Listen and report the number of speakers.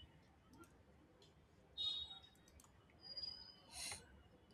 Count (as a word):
zero